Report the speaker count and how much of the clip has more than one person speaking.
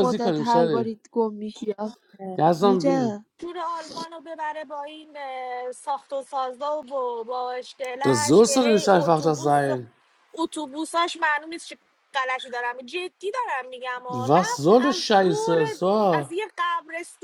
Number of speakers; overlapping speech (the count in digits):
3, about 27%